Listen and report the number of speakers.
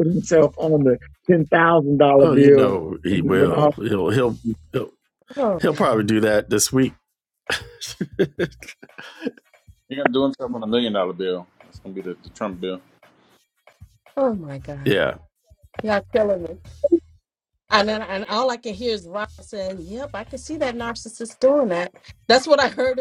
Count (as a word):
four